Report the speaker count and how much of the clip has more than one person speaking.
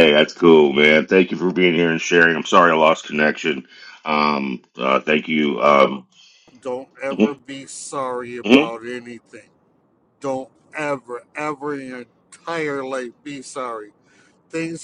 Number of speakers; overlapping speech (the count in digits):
2, about 3%